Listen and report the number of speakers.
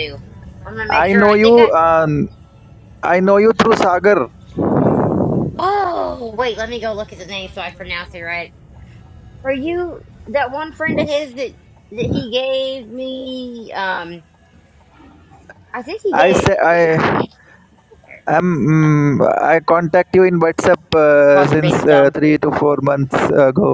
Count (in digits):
2